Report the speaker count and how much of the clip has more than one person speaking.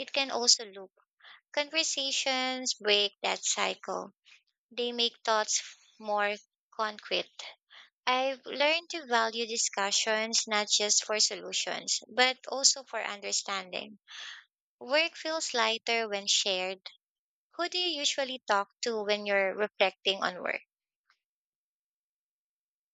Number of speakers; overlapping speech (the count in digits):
1, no overlap